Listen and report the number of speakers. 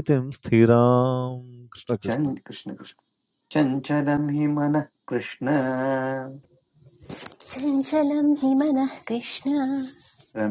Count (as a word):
three